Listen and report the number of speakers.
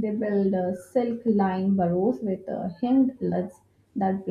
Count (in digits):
1